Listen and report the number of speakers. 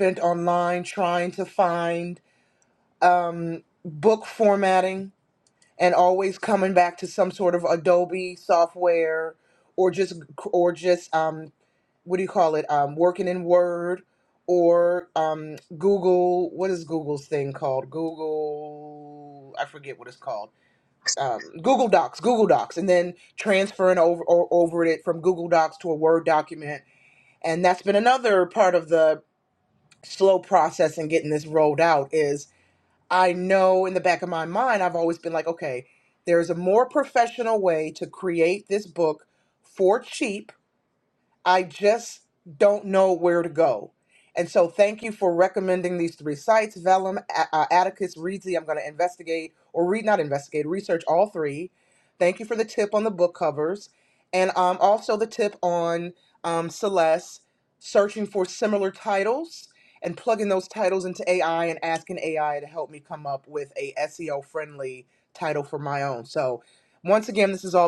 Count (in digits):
1